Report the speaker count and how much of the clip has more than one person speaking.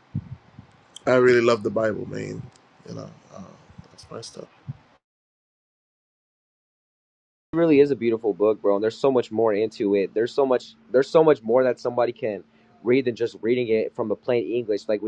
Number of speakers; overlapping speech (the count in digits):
2, no overlap